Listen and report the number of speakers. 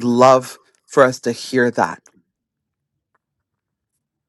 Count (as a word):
one